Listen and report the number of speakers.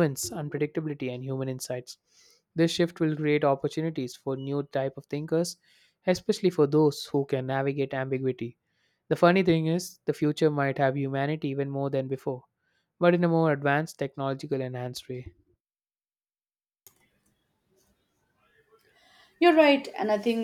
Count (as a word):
two